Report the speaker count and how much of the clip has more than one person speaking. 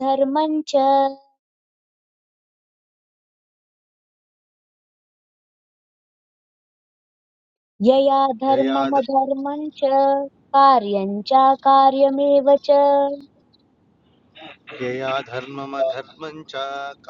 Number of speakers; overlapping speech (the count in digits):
2, about 2%